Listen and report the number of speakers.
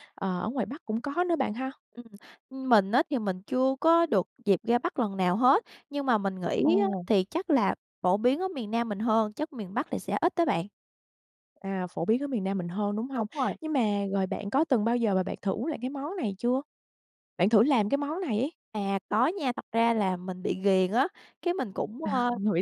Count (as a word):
two